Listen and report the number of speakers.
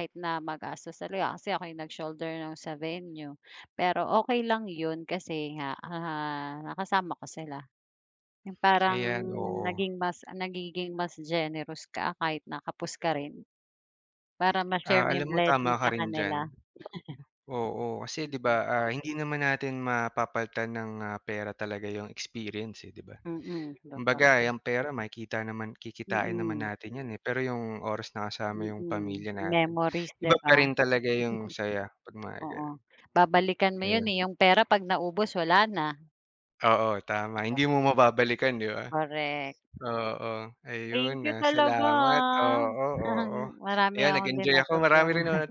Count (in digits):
2